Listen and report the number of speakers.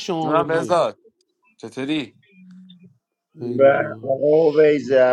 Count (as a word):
three